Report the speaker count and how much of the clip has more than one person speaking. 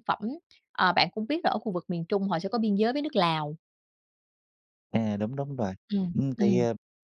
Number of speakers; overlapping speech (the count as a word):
two, about 7%